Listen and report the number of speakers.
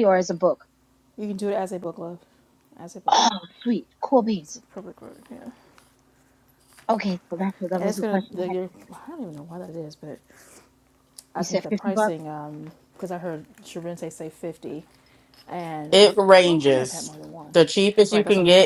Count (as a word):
three